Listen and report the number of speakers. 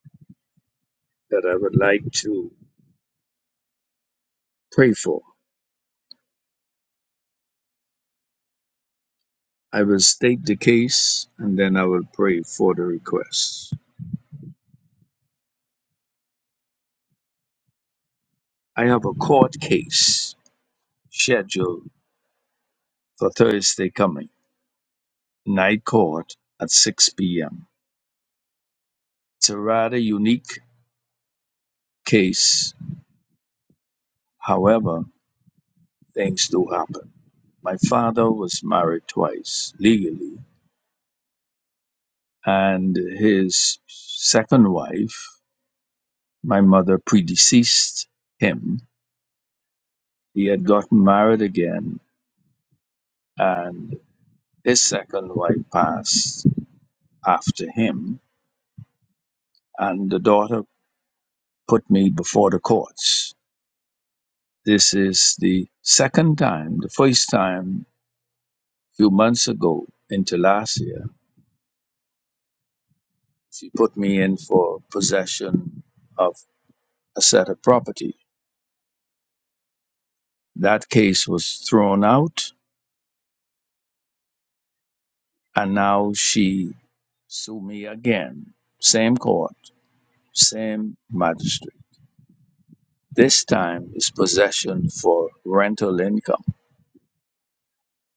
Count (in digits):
1